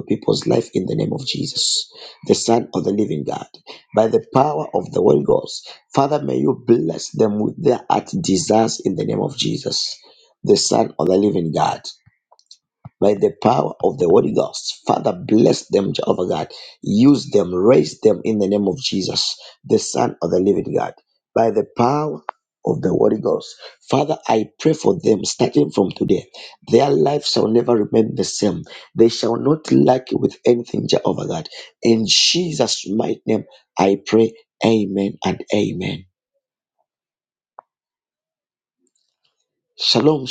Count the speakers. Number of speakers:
1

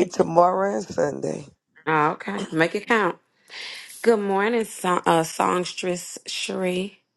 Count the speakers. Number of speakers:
2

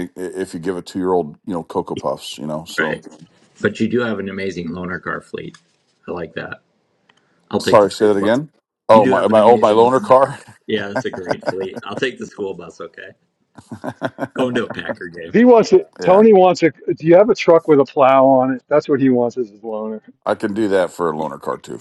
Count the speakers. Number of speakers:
3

